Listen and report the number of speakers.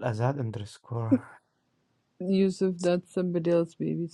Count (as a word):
two